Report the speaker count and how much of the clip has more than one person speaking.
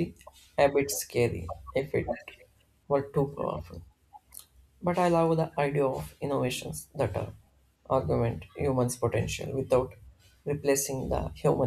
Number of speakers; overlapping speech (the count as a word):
one, no overlap